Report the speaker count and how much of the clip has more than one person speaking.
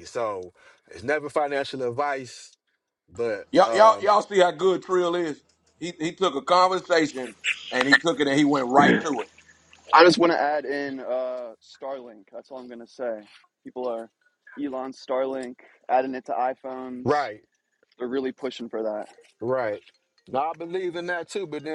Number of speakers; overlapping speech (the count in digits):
3, about 3%